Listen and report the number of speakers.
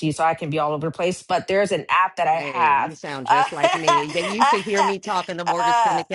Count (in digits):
2